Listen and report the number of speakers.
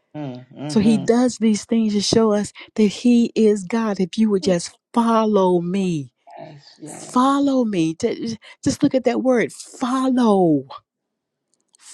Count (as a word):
two